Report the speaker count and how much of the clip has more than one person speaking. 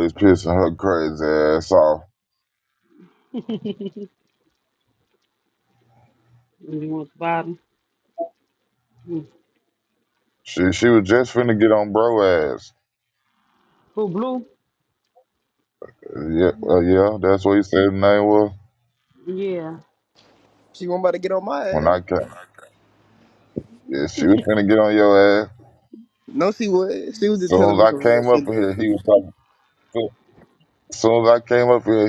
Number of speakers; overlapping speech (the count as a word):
three, about 4%